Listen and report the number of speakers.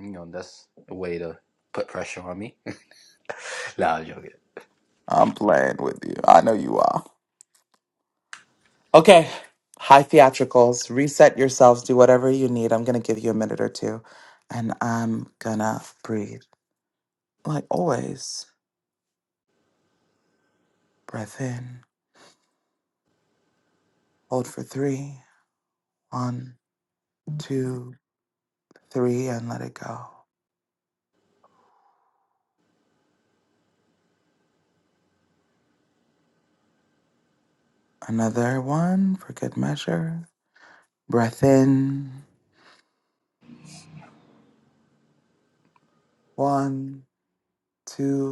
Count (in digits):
2